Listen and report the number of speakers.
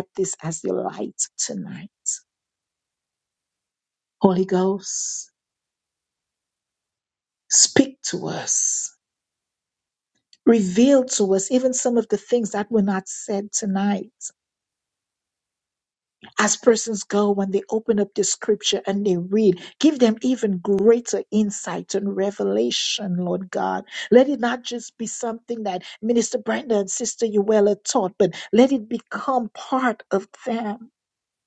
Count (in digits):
1